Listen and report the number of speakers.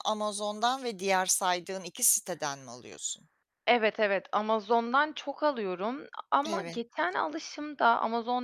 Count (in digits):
2